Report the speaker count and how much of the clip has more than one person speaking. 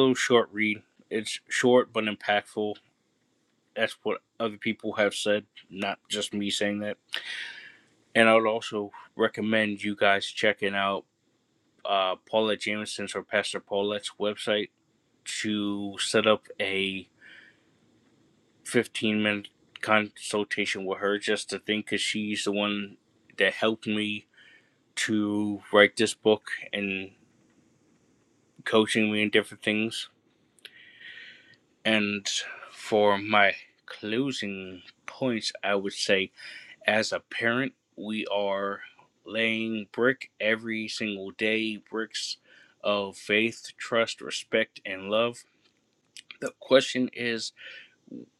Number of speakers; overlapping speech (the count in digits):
1, no overlap